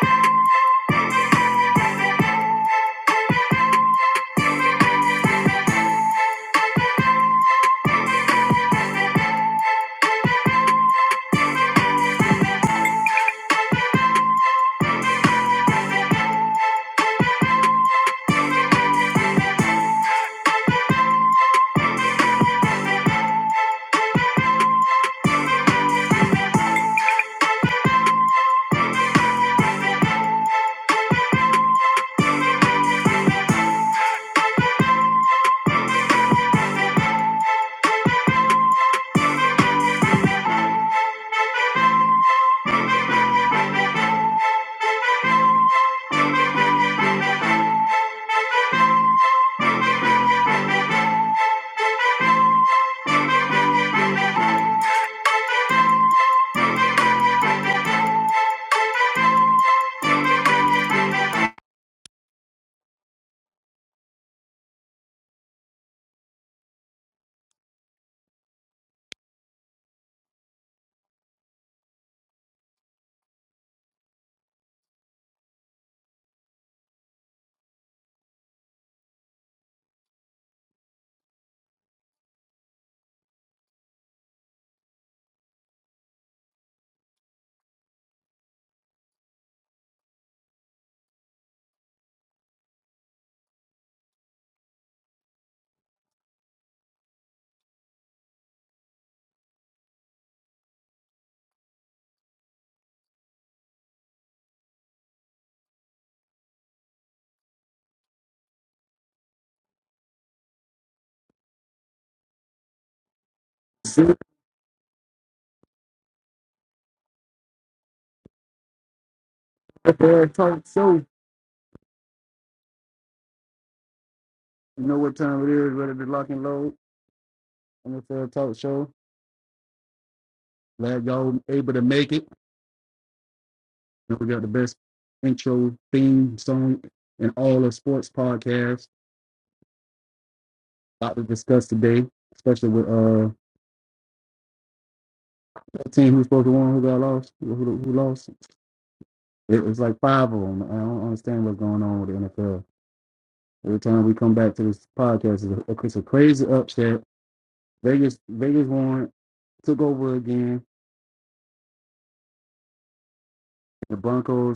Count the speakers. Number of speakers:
one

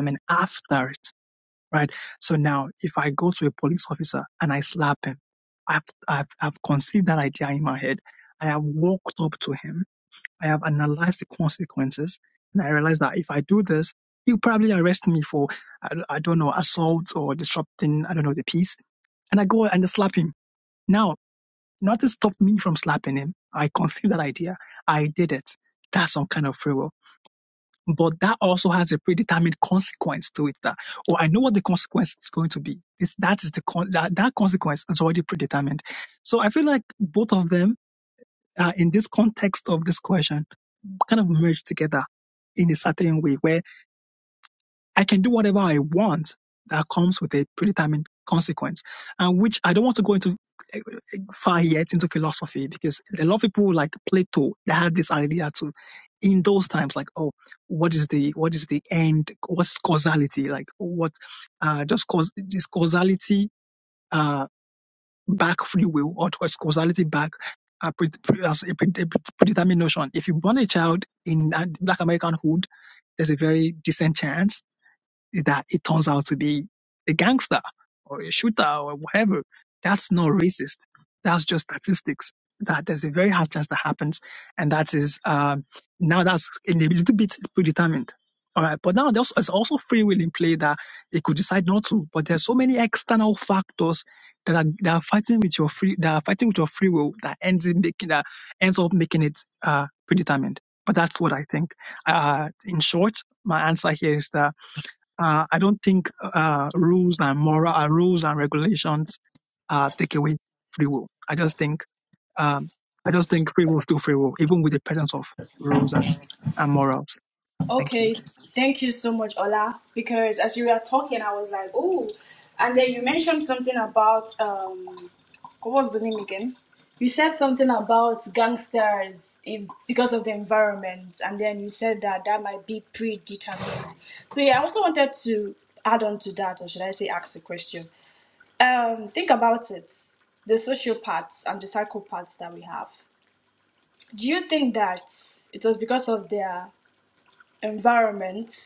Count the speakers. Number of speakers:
two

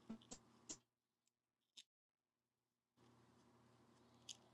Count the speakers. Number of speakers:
zero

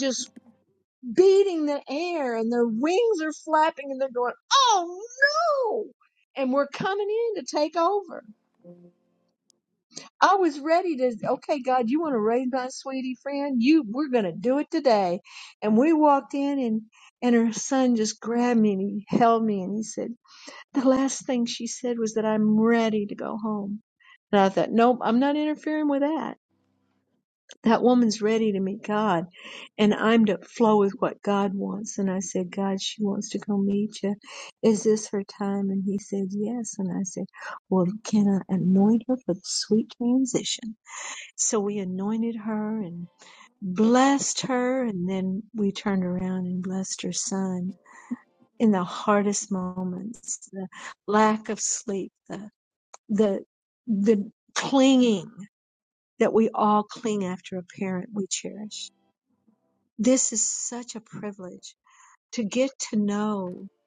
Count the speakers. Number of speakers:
one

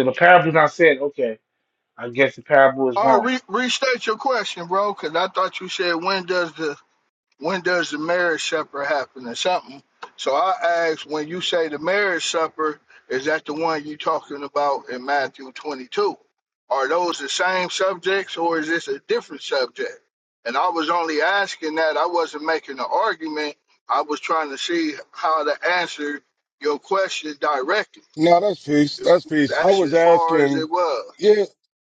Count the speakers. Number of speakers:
three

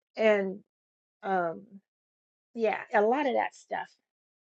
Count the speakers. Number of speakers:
one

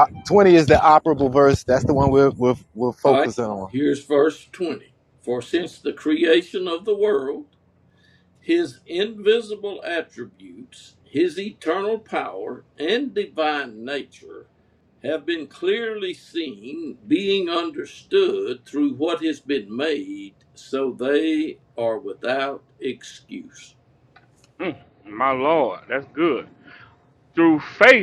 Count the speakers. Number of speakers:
three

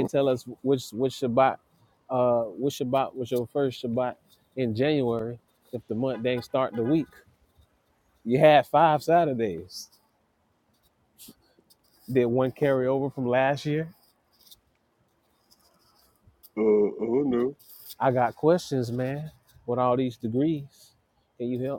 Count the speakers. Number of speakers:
two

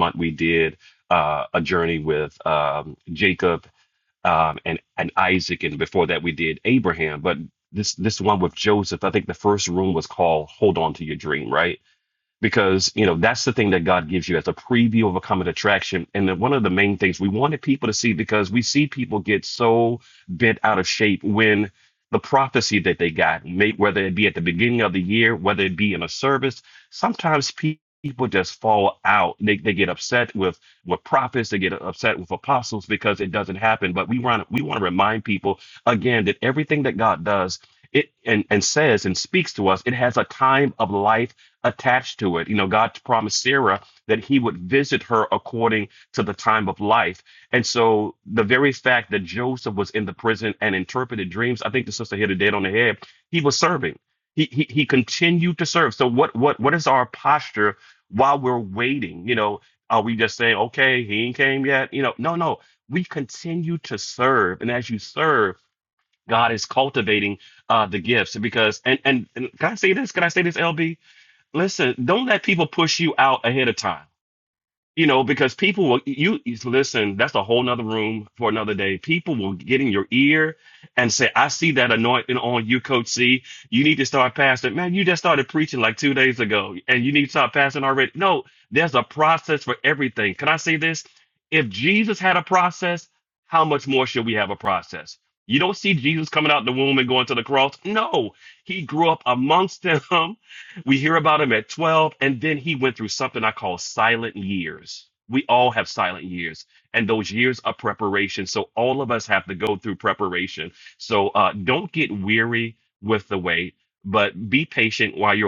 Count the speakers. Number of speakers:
one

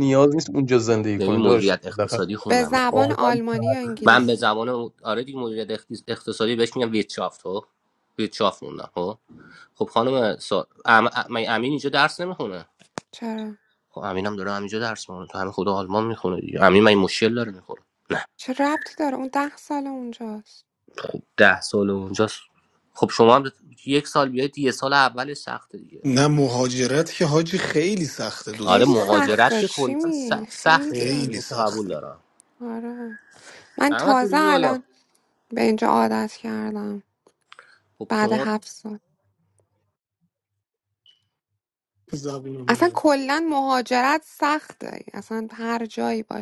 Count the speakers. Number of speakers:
four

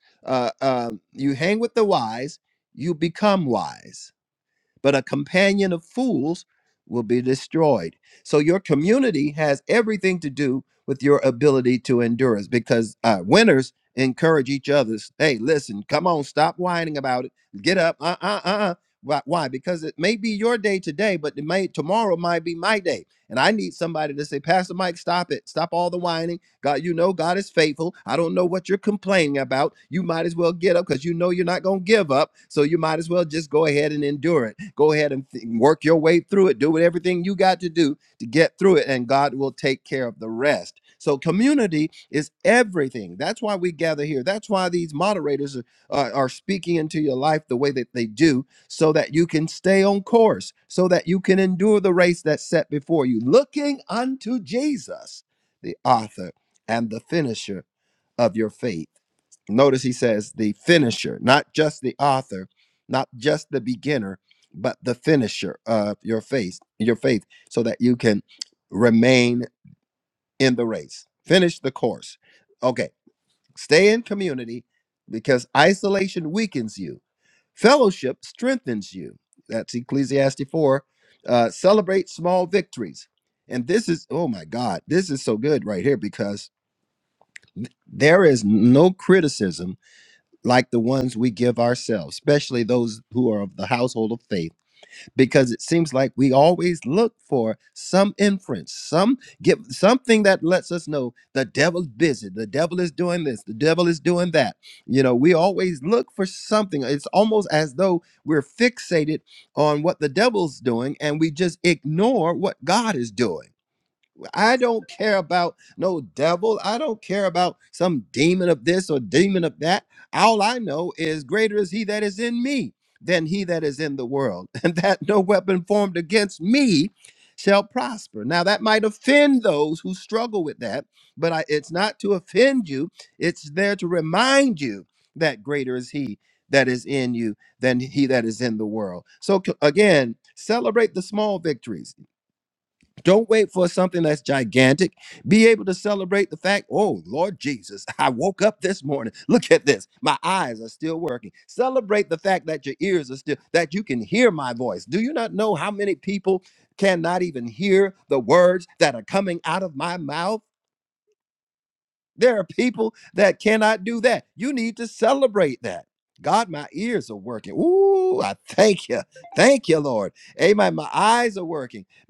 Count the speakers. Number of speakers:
one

